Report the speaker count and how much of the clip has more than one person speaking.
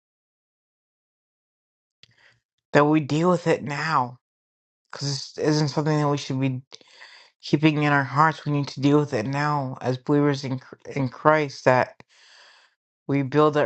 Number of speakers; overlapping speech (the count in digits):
1, no overlap